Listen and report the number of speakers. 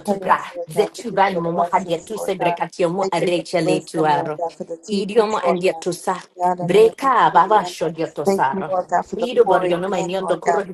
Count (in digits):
2